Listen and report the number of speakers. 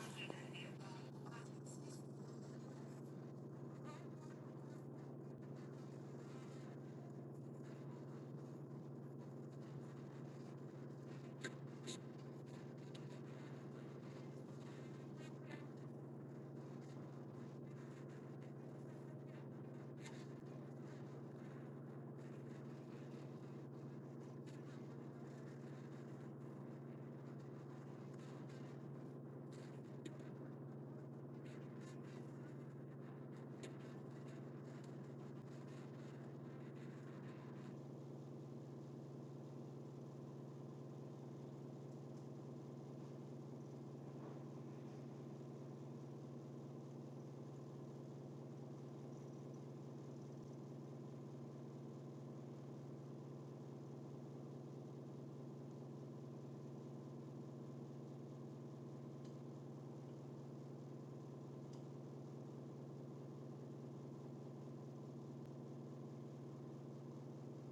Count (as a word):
zero